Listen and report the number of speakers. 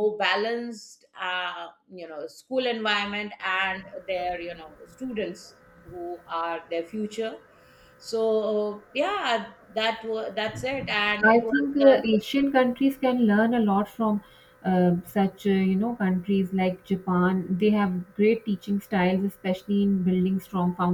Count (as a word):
two